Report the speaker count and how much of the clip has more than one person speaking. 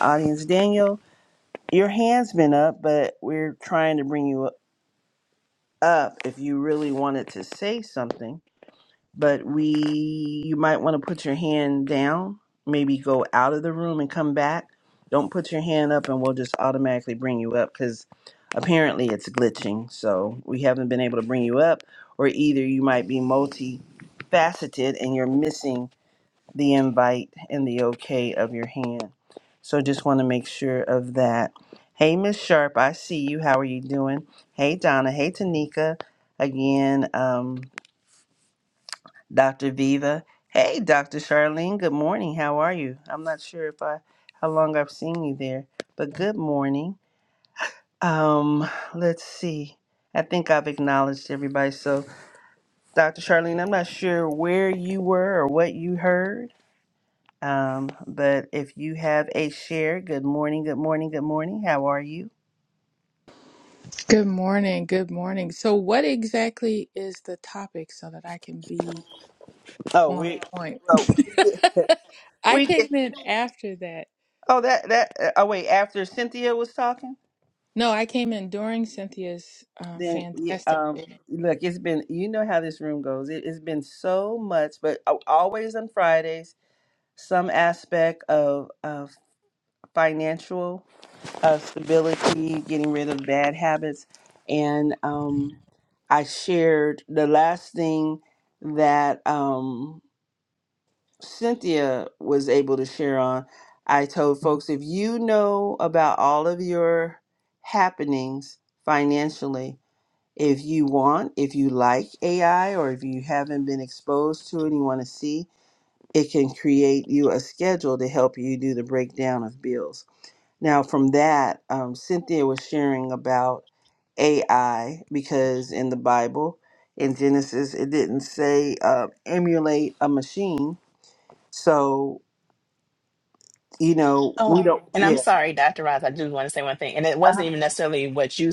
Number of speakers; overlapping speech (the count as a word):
three, about 2%